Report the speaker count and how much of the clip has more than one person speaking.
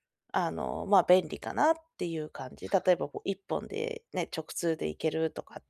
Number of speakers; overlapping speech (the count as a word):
one, no overlap